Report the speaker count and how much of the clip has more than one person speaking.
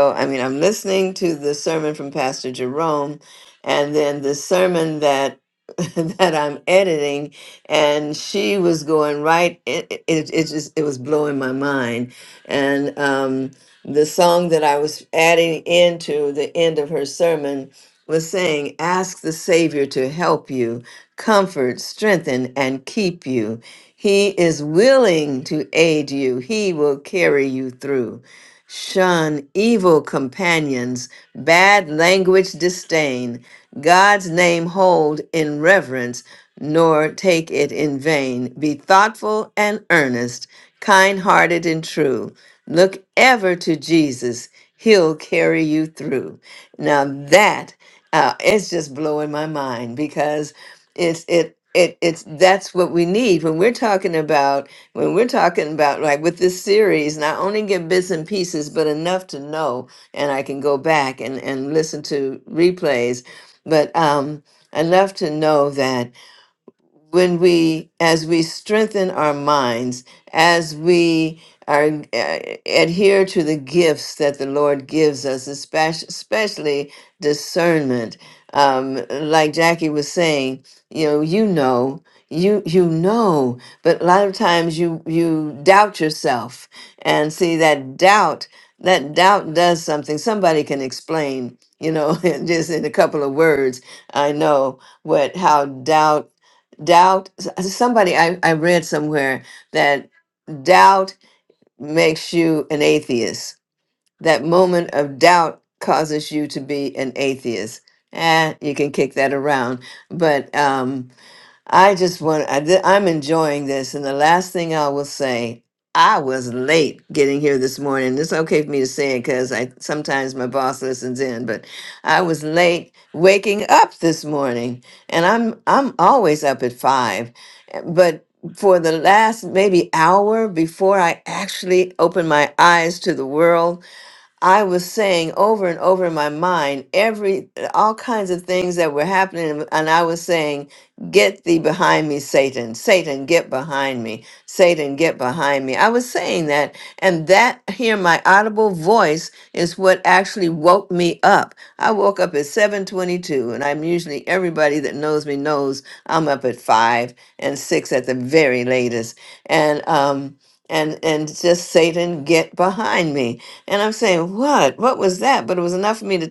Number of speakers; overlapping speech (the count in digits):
1, no overlap